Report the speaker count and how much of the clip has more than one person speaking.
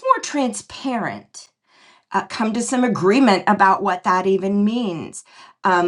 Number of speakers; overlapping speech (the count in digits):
1, no overlap